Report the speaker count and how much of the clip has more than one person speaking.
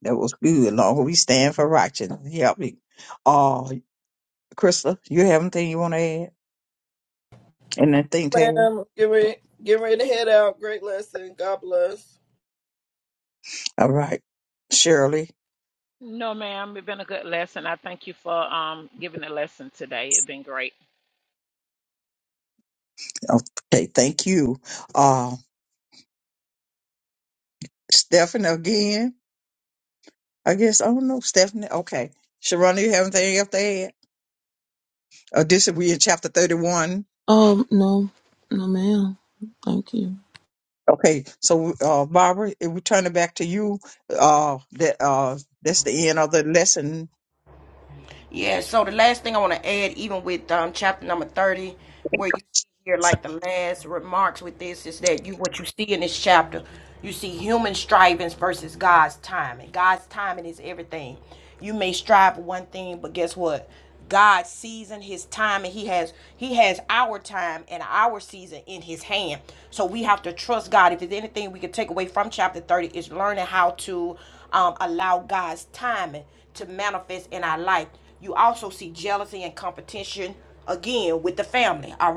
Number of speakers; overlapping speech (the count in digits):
5, under 1%